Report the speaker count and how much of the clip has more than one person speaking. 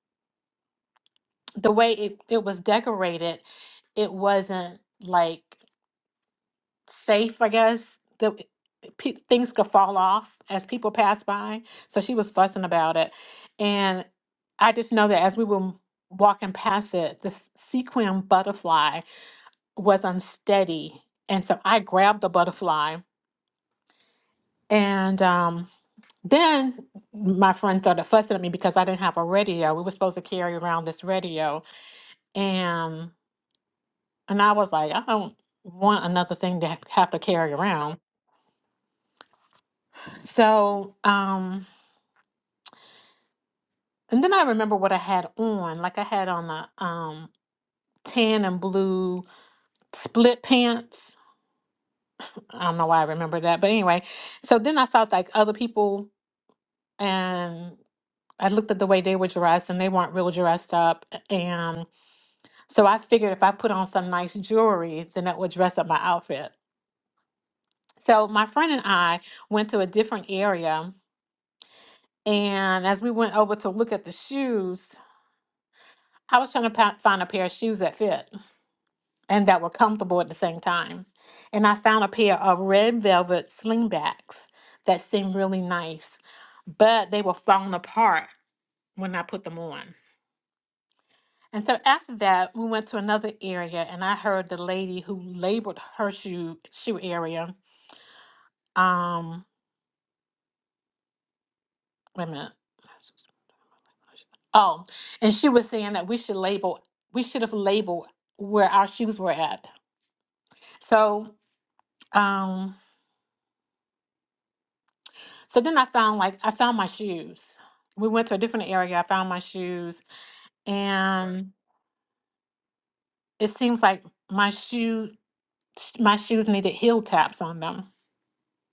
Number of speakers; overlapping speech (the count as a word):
one, no overlap